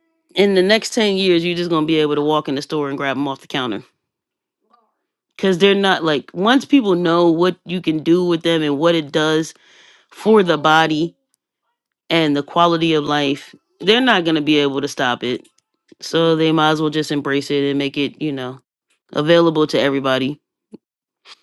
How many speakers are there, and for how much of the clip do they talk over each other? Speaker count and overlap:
1, no overlap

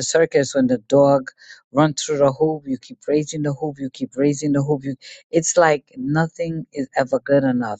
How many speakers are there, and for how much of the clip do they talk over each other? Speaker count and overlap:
1, no overlap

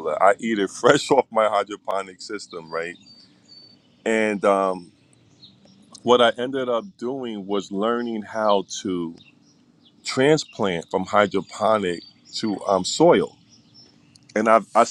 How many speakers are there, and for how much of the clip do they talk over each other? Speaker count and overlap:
1, no overlap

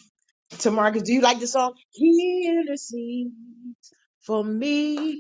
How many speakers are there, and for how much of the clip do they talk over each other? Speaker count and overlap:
1, no overlap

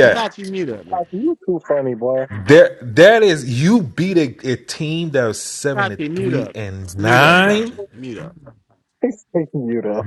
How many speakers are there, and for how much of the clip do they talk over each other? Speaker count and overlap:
3, about 18%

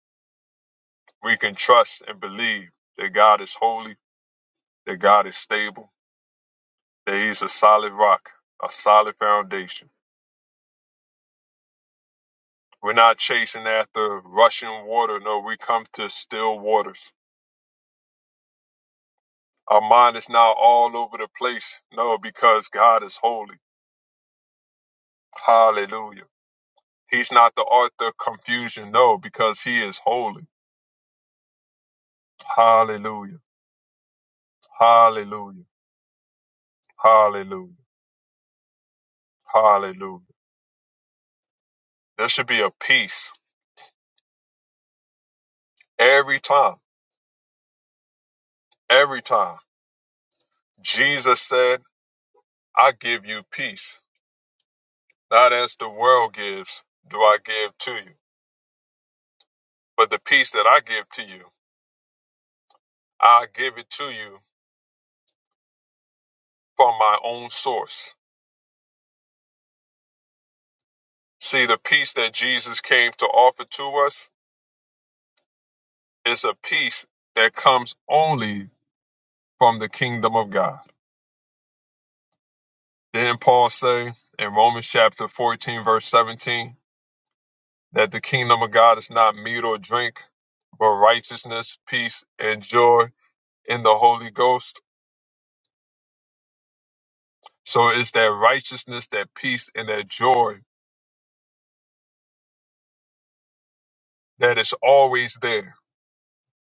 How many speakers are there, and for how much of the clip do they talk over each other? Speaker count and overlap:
1, no overlap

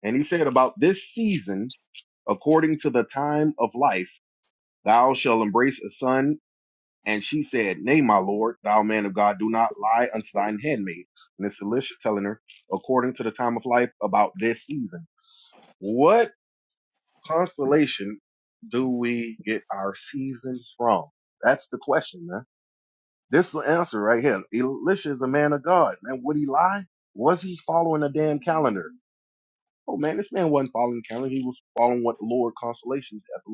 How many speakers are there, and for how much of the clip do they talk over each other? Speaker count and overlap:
1, no overlap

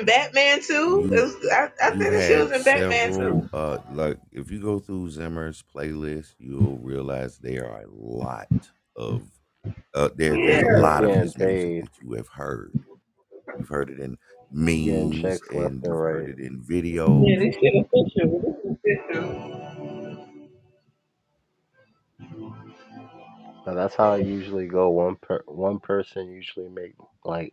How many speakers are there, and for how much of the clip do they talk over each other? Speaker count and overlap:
3, about 20%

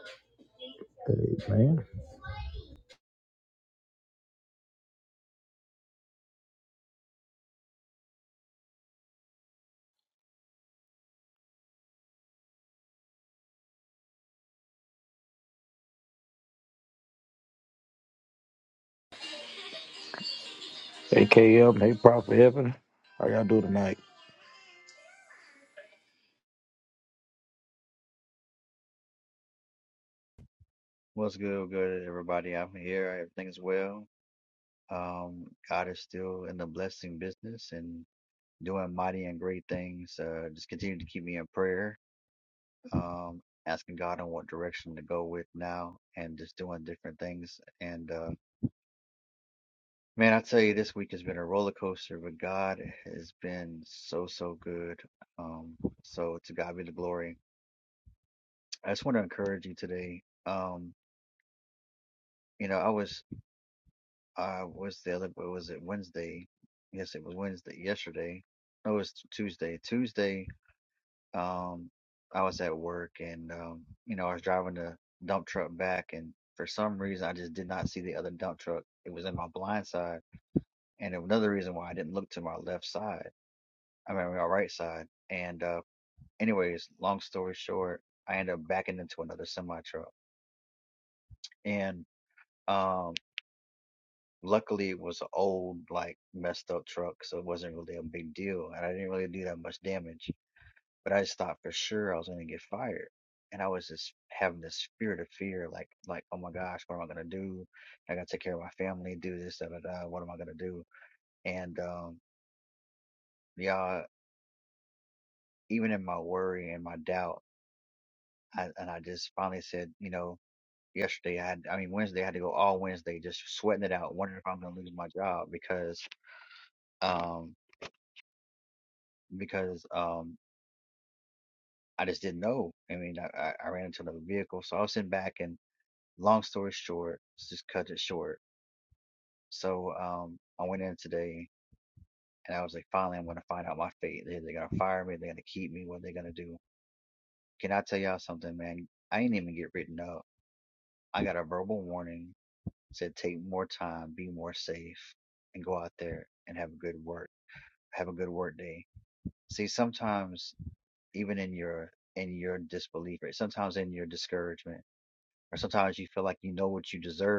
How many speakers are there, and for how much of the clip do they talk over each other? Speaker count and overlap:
2, no overlap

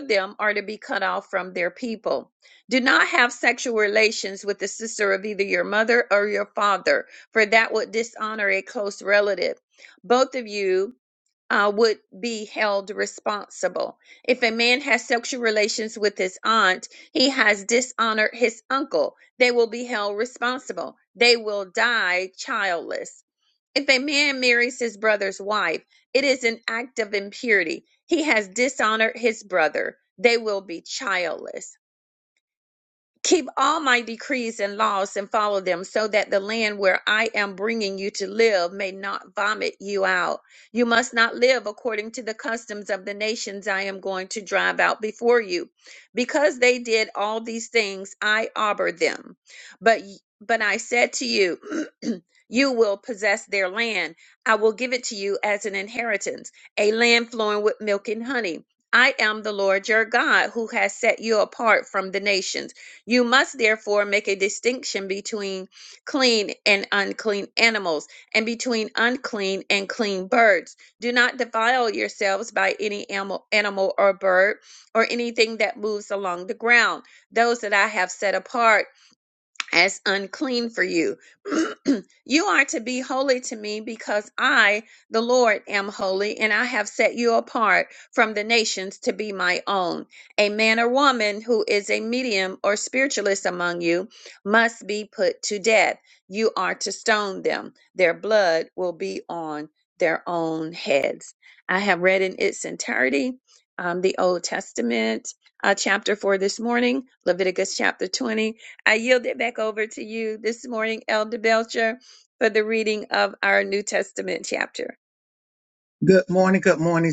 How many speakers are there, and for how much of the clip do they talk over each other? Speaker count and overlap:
2, no overlap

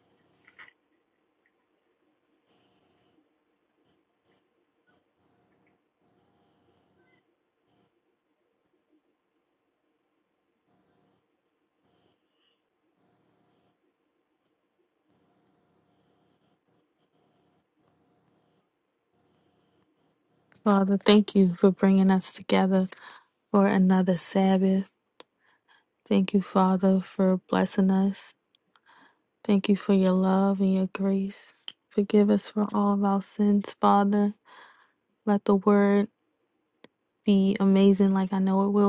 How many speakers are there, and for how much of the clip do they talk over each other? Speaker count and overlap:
1, no overlap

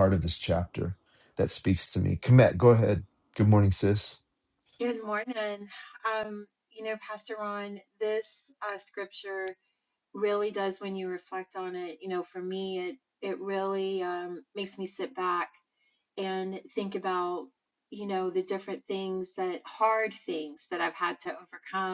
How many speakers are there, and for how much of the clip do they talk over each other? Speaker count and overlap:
2, no overlap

